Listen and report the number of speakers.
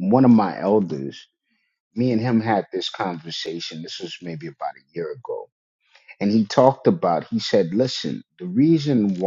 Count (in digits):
1